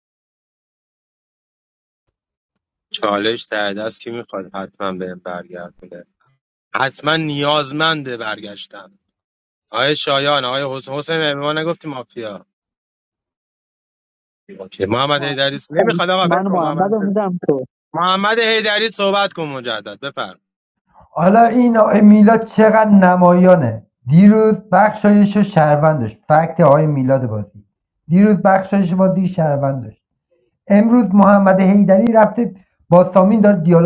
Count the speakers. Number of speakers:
three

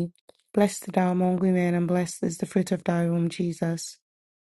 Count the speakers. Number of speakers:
one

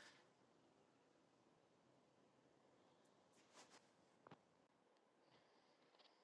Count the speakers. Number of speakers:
zero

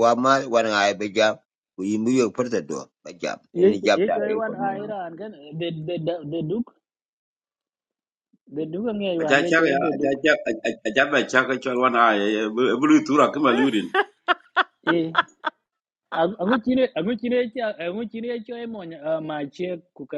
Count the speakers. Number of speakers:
three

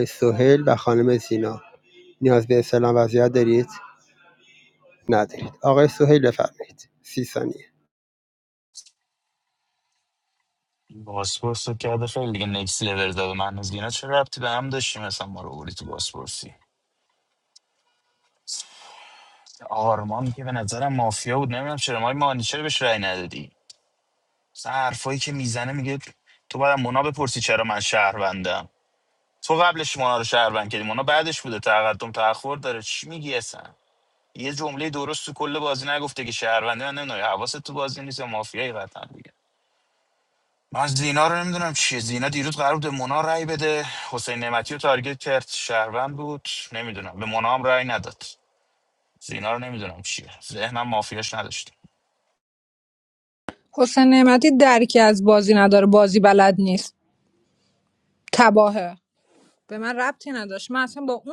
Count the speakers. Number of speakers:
three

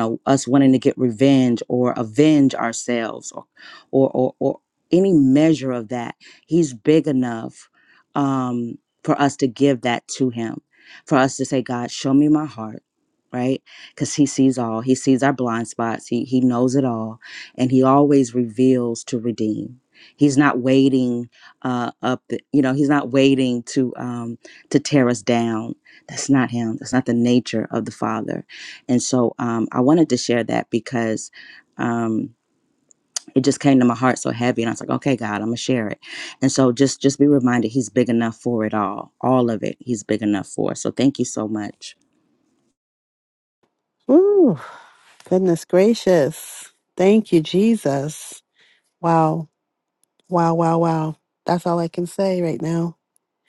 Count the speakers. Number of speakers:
two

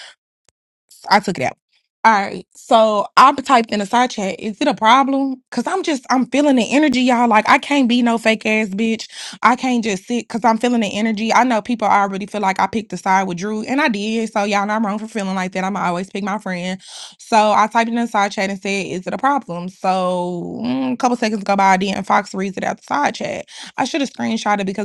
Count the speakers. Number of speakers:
one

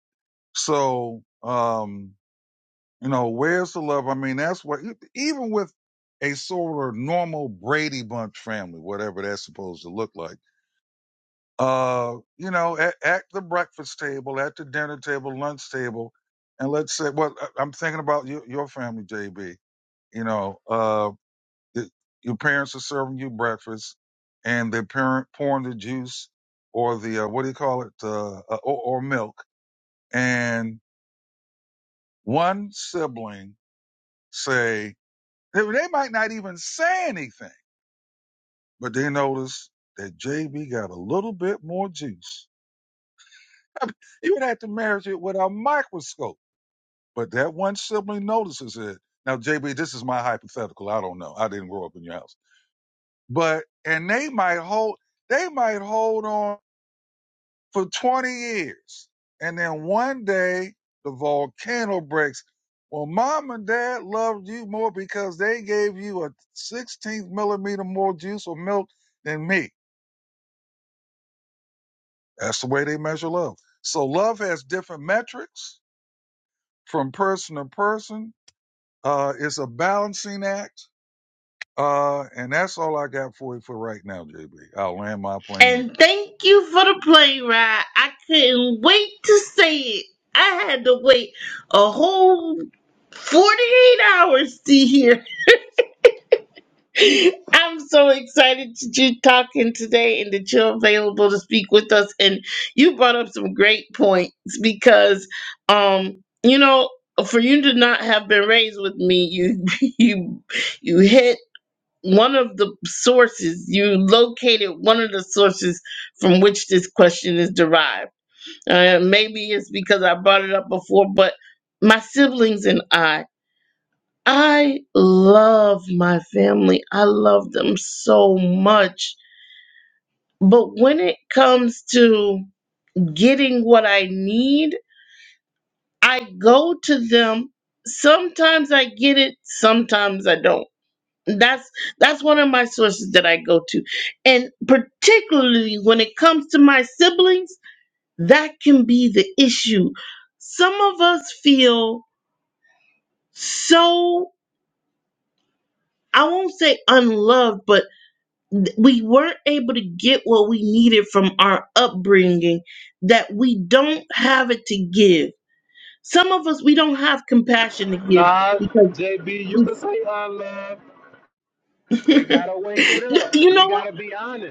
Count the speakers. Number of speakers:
three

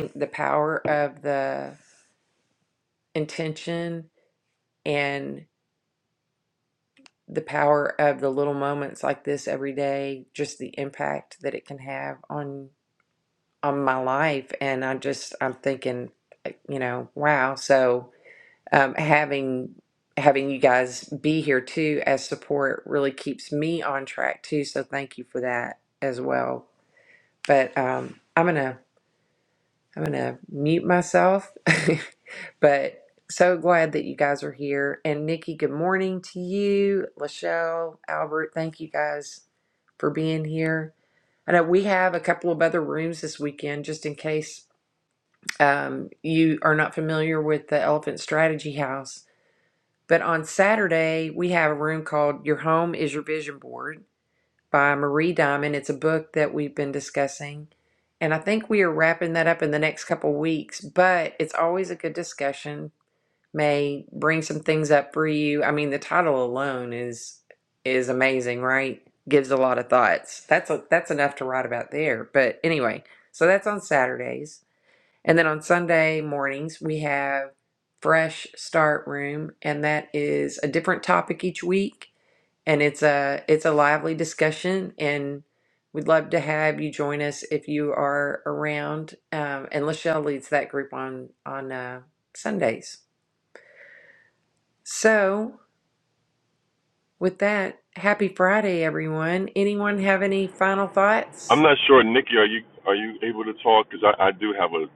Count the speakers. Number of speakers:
two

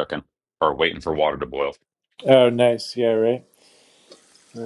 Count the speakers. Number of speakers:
two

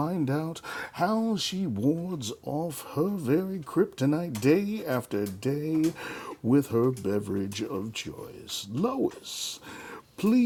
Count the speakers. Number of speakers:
one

